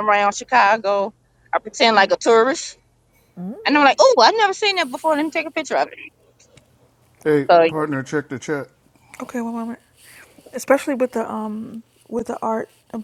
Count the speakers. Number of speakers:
3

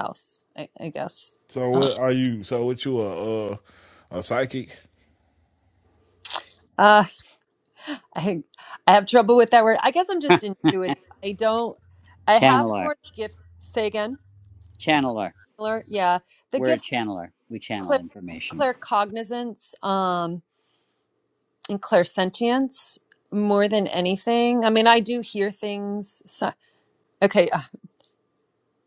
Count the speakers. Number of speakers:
3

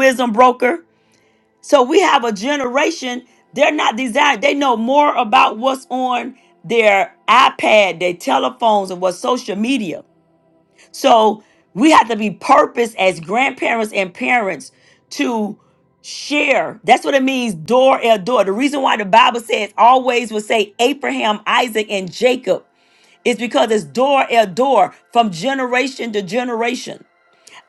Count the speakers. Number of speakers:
1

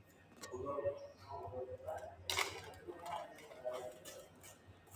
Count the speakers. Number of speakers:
0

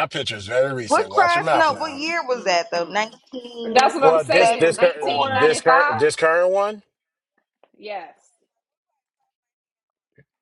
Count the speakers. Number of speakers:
3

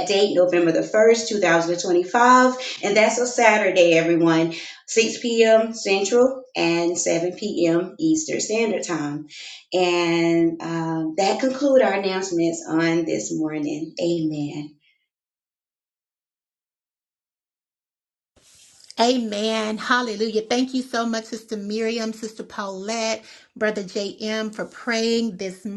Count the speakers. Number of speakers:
2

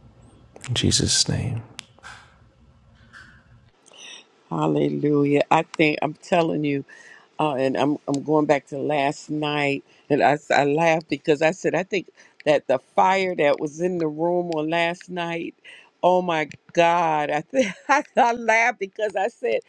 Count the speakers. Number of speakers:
2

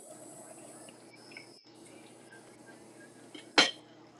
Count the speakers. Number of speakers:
0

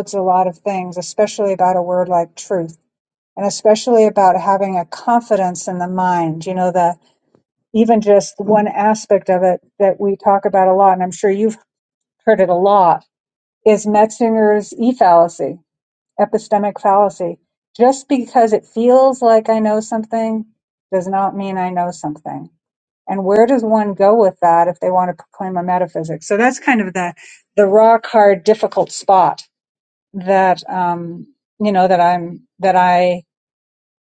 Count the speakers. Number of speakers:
1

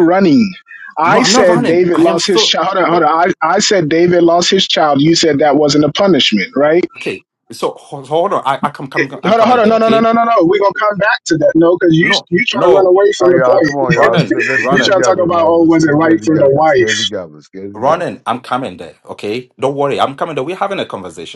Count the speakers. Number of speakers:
3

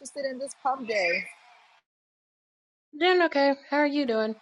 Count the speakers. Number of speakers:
2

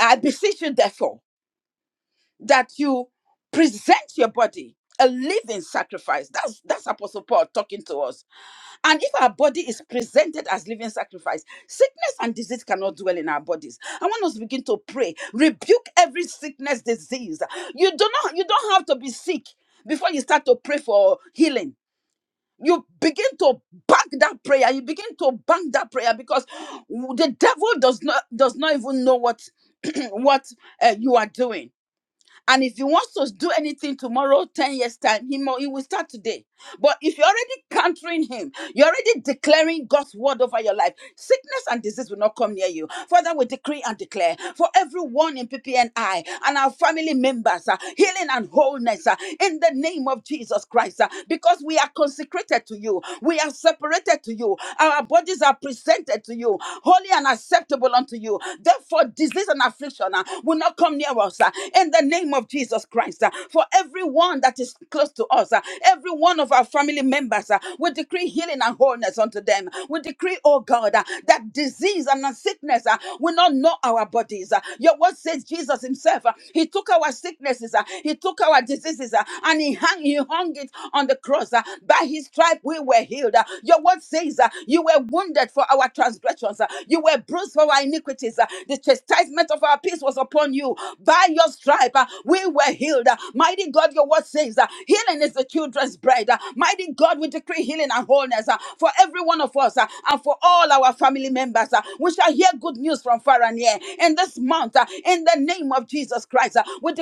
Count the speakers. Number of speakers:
1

